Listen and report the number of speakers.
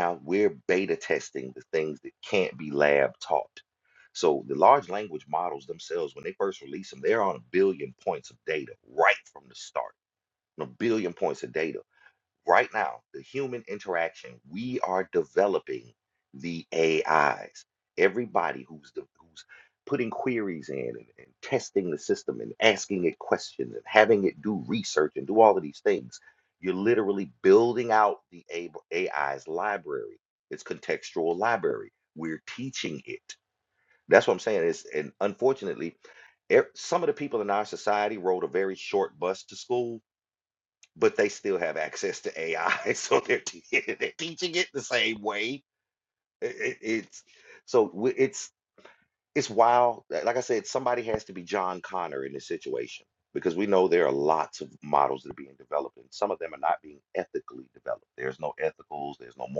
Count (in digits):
1